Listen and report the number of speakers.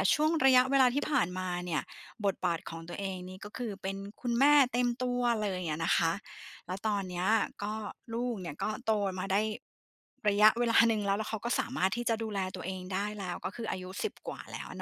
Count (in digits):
1